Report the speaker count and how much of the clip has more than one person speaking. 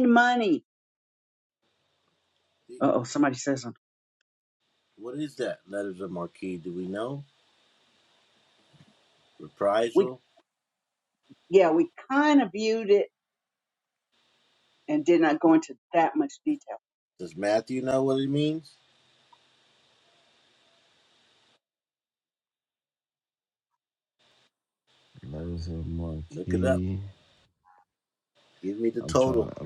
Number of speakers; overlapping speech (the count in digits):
3, about 4%